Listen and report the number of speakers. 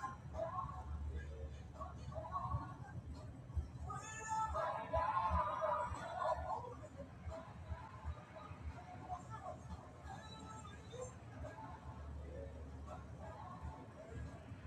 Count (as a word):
zero